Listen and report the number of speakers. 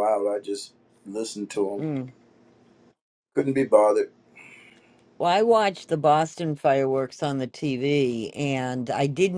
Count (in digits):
2